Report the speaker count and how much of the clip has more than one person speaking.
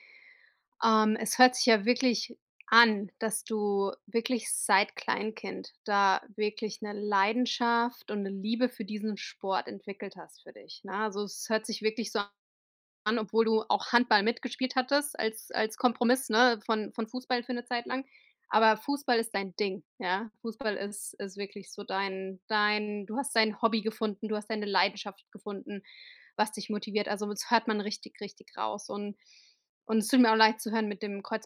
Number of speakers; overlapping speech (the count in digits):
1, no overlap